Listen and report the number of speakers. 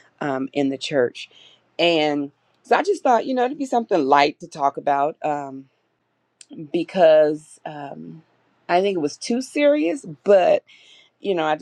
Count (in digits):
1